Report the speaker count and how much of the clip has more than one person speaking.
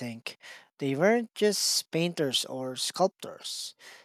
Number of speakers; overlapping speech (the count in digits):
1, no overlap